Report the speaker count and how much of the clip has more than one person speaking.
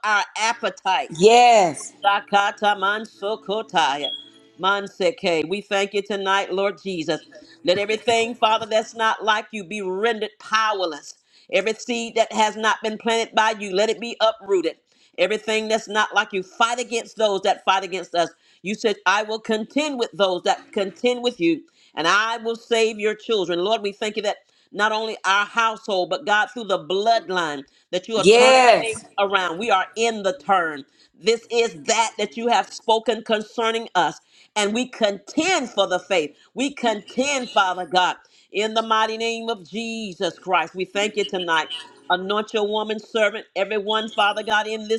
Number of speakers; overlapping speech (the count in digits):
2, about 2%